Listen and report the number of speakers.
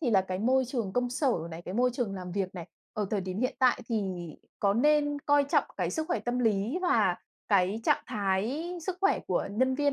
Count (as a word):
one